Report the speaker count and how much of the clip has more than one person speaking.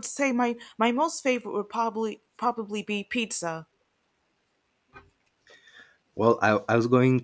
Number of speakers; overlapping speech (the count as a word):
two, no overlap